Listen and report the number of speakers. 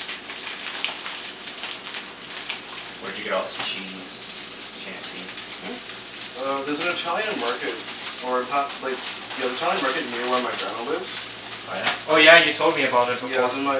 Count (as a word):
three